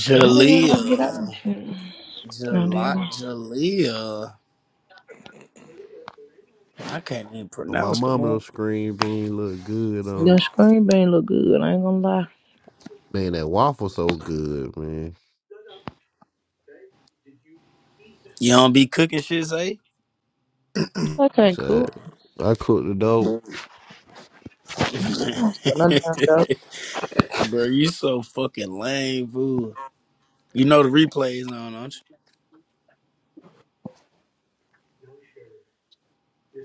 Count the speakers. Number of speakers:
three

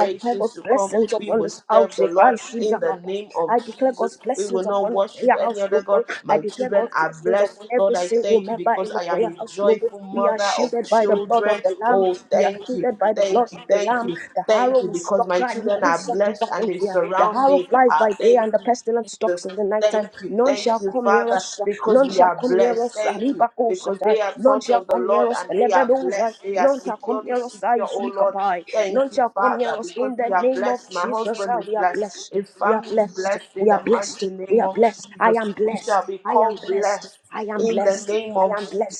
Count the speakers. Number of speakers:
two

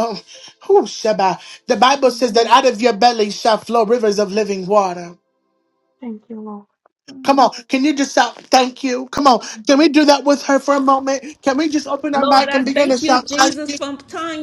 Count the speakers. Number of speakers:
three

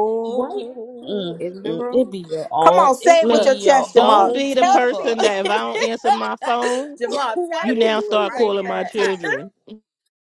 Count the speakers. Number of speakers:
three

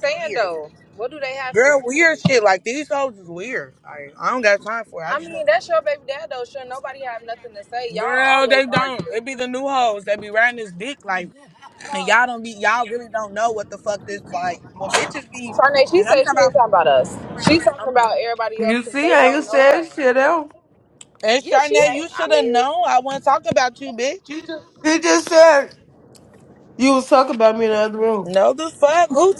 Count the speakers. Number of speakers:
three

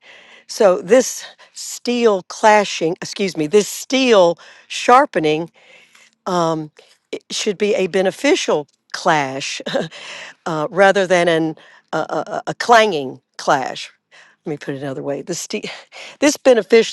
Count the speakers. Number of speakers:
one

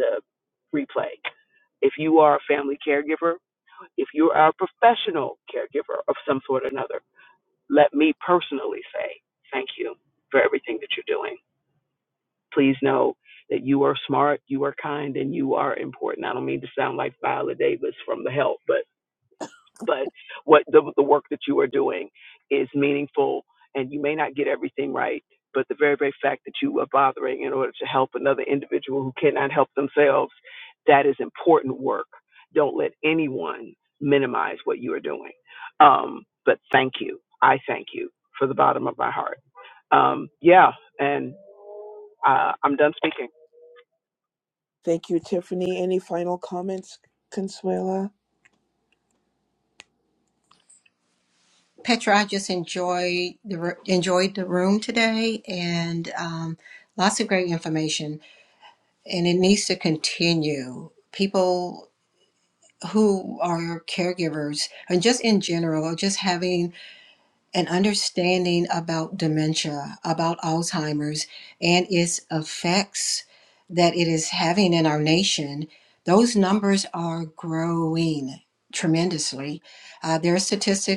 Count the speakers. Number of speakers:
three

